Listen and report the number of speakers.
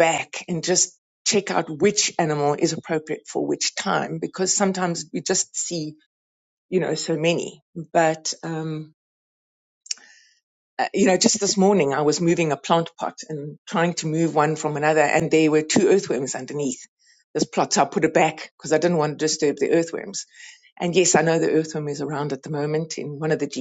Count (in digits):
1